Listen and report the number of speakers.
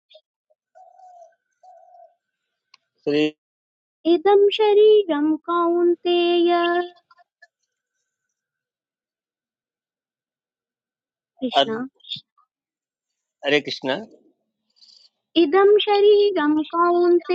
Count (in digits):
2